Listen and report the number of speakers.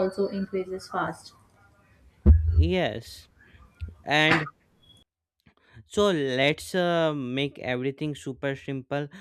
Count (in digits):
2